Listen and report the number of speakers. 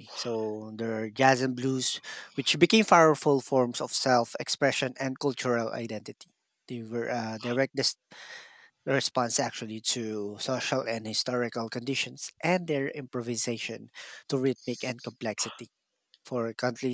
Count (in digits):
1